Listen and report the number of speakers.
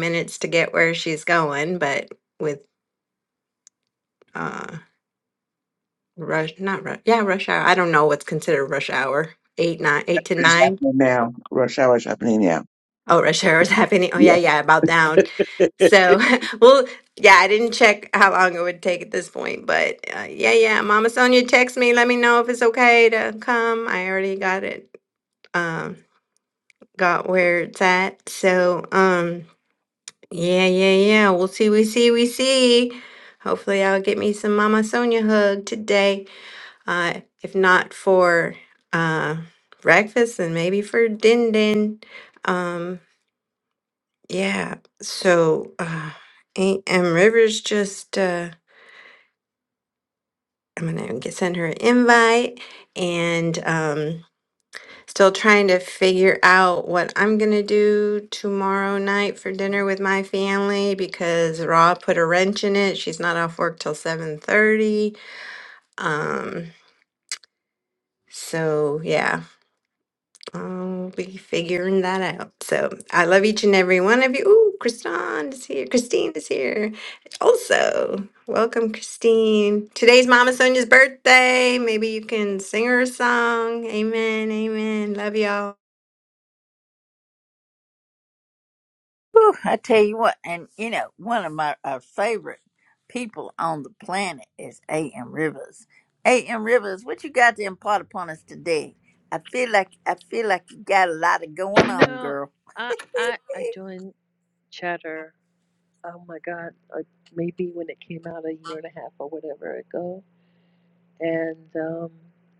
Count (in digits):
4